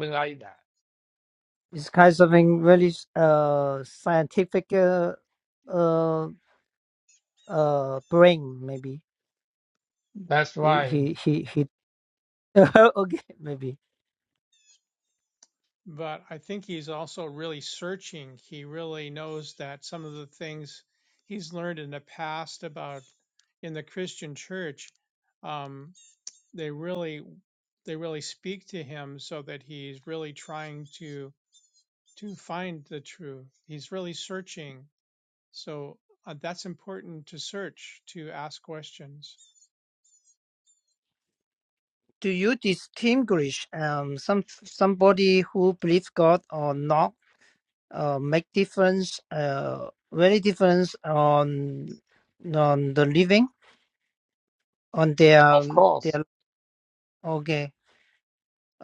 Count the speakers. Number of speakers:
3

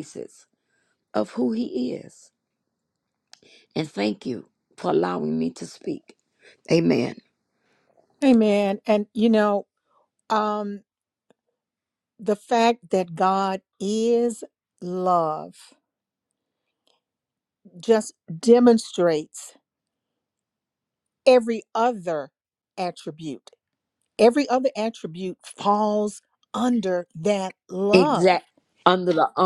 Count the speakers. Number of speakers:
2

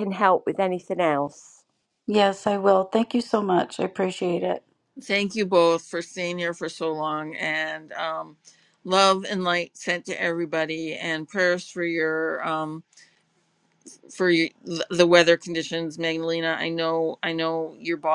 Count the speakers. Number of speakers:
3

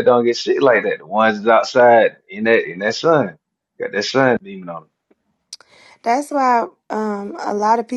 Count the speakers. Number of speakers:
2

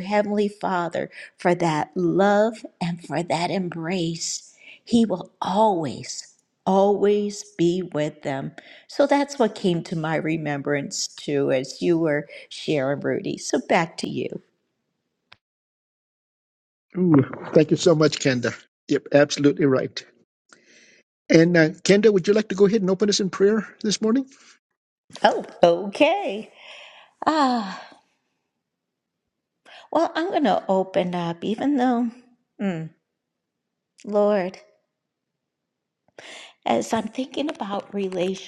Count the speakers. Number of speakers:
2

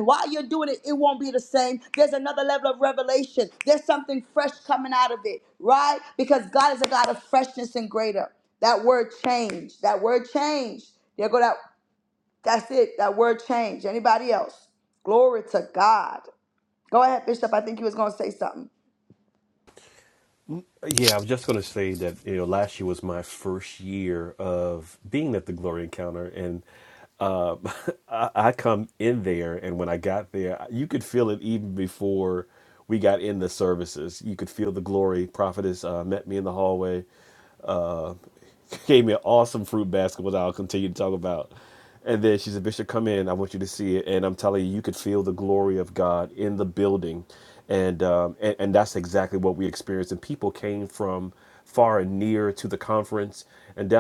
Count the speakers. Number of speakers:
2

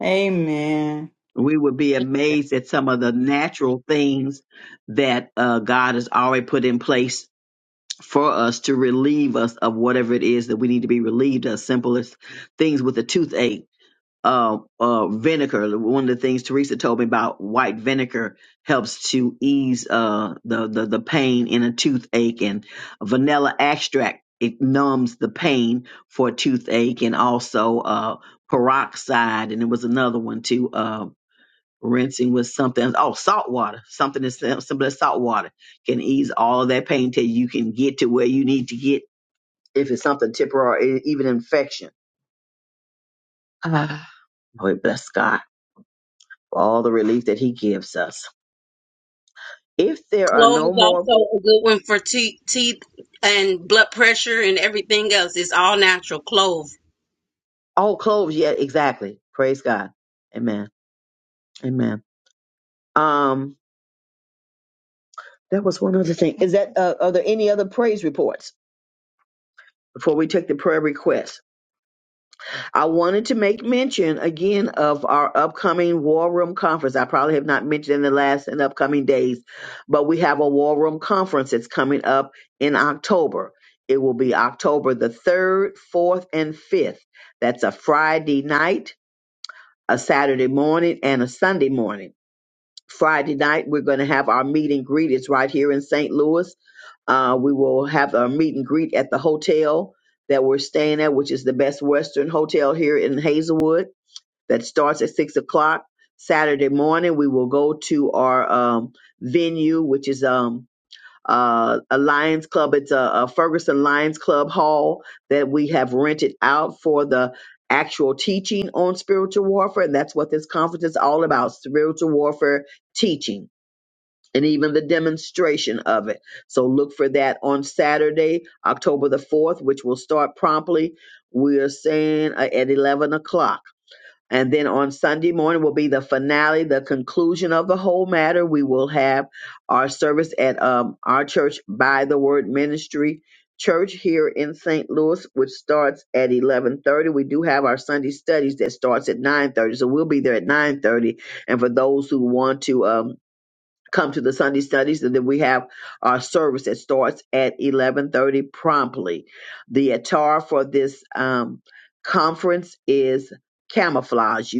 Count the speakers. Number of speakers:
3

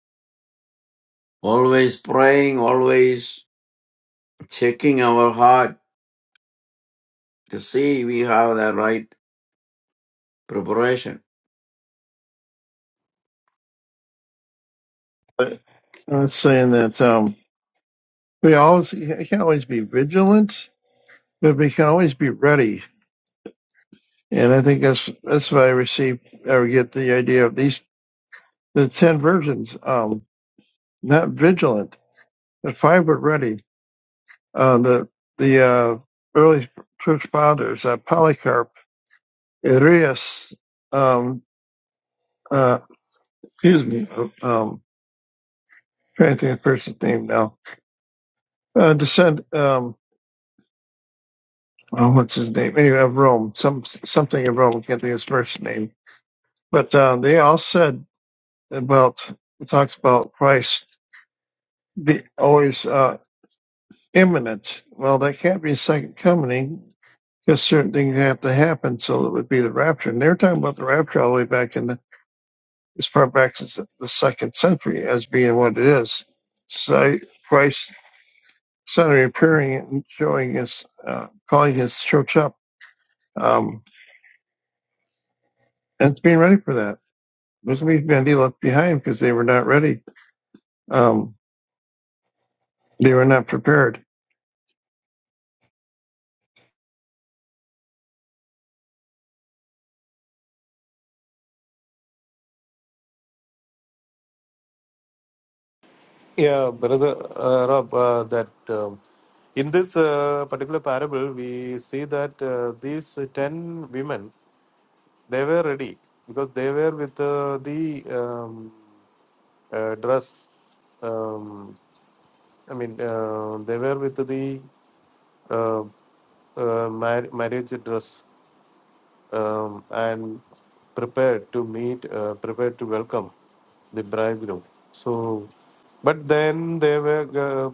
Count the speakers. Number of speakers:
3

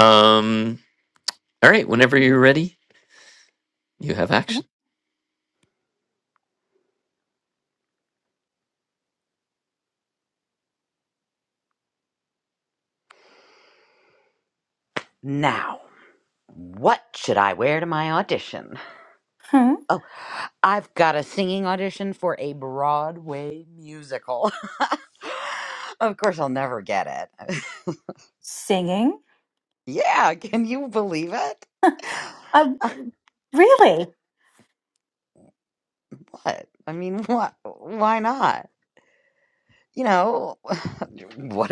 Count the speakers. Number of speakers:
3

